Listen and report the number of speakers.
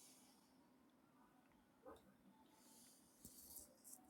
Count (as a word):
zero